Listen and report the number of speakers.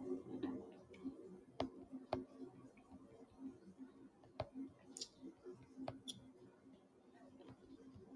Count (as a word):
zero